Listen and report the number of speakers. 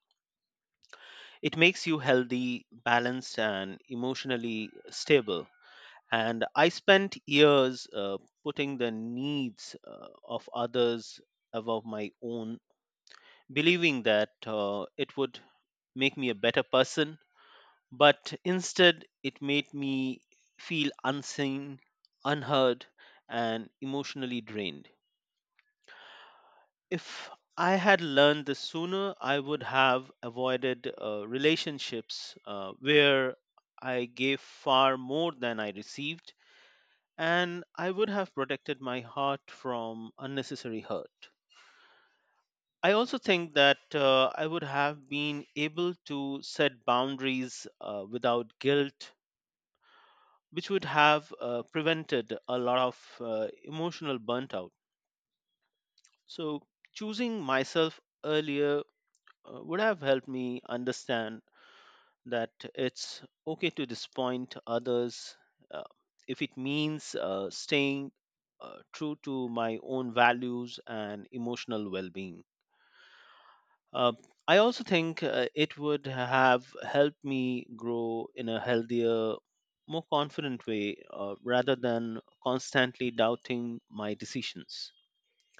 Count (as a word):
one